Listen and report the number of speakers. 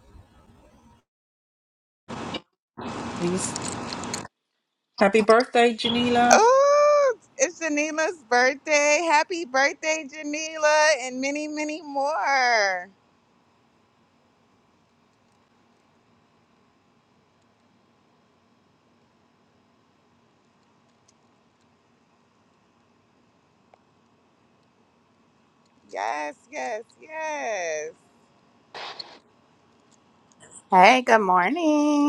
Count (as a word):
three